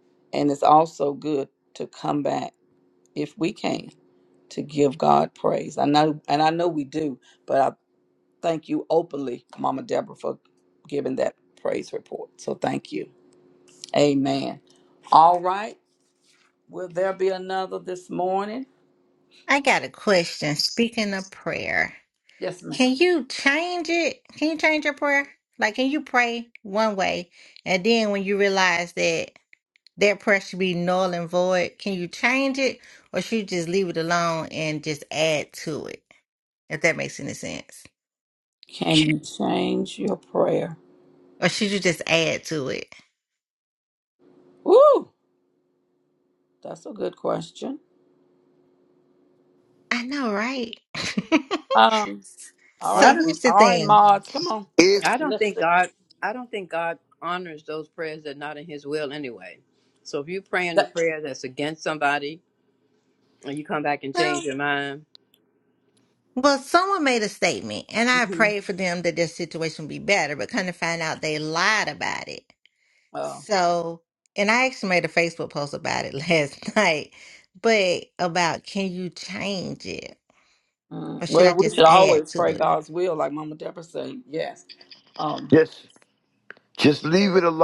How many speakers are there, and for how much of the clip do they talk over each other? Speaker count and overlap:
4, about 4%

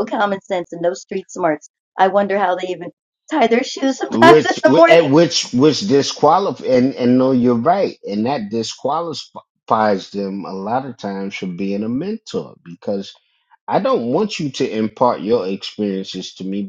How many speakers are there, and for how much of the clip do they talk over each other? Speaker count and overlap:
2, about 6%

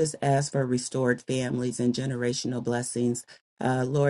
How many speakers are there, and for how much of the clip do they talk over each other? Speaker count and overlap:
1, no overlap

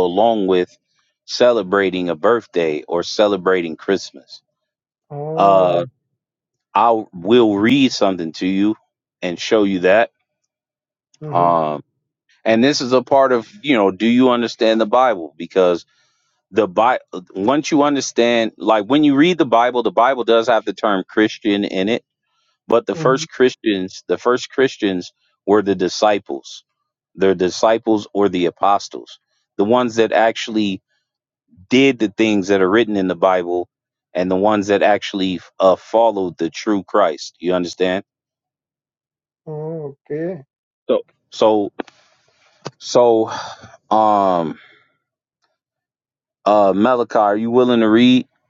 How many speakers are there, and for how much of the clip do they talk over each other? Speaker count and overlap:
2, about 2%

